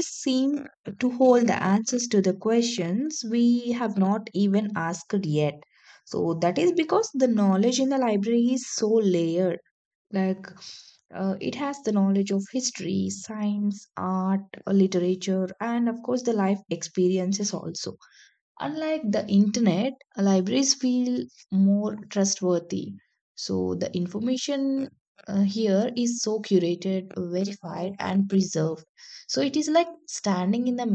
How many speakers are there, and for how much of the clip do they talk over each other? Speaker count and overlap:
1, no overlap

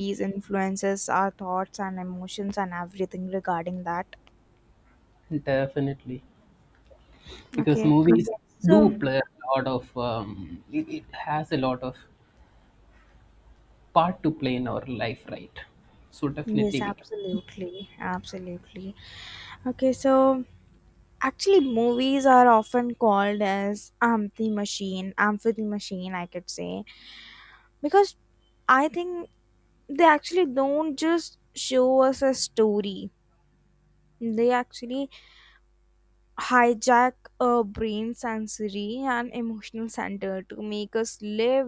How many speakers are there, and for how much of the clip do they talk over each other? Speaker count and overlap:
2, about 3%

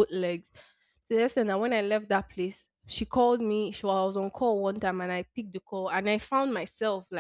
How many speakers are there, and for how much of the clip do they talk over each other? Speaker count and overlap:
1, no overlap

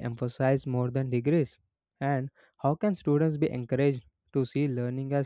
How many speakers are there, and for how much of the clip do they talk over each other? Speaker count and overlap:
1, no overlap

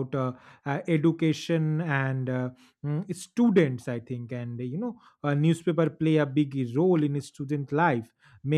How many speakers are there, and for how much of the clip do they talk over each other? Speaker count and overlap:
1, no overlap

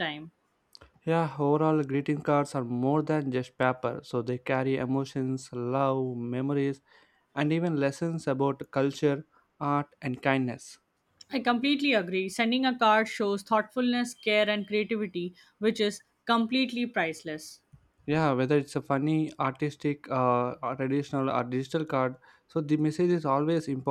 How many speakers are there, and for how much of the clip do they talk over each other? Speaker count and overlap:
2, no overlap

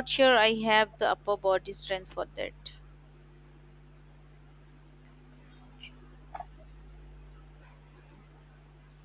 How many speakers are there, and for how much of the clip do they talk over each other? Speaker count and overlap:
1, no overlap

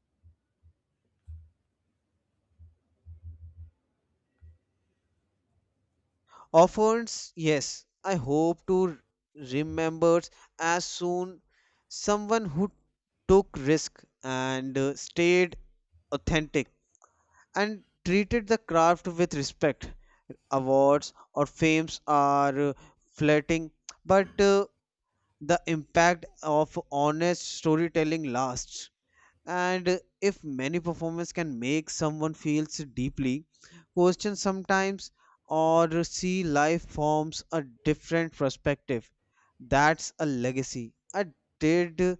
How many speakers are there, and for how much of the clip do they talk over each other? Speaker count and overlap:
1, no overlap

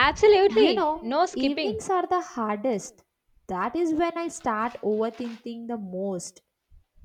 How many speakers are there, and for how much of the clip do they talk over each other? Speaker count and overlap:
2, about 18%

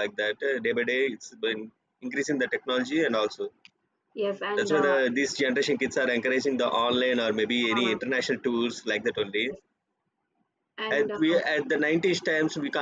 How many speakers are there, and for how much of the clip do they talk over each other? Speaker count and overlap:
2, about 10%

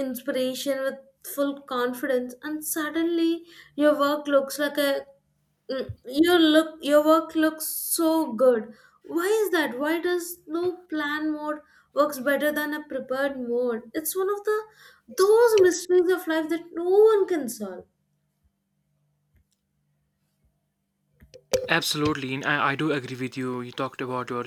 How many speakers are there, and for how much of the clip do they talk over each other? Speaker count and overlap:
2, no overlap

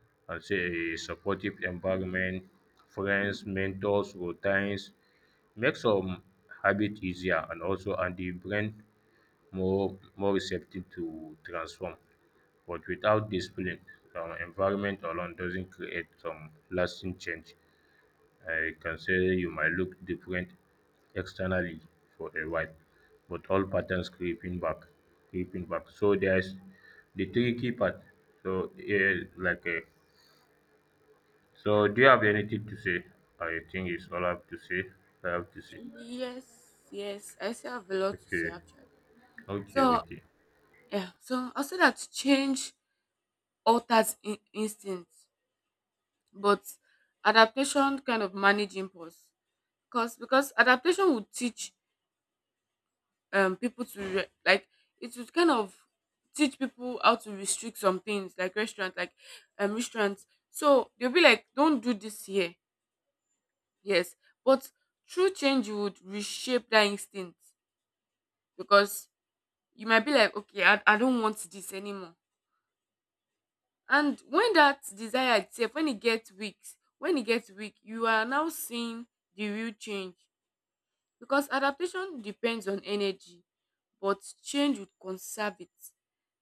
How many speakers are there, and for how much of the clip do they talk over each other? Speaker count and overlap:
2, about 1%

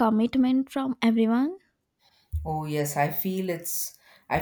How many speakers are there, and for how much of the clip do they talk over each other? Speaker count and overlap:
2, no overlap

